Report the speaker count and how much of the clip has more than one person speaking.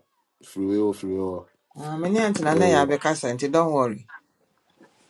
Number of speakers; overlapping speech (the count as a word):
two, about 7%